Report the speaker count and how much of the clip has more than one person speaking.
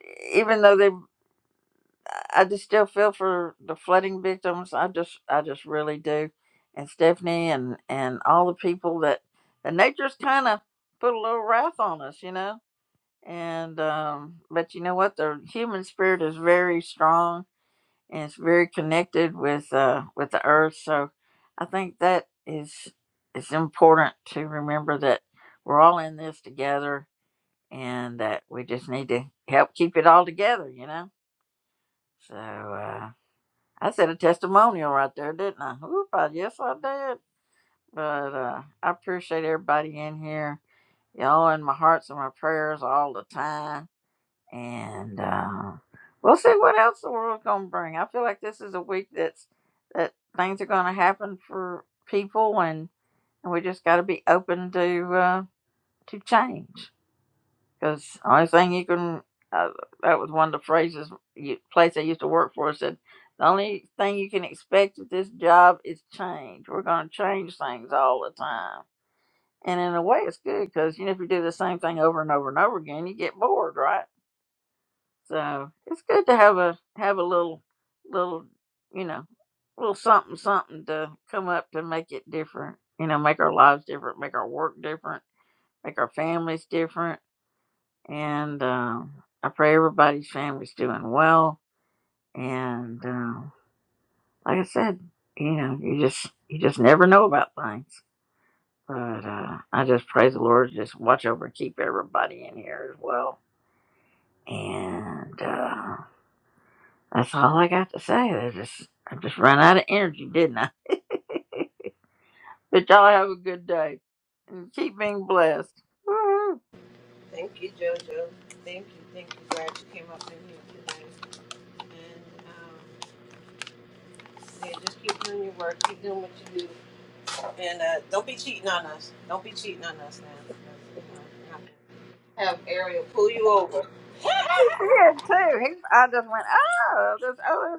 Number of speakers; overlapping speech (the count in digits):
2, no overlap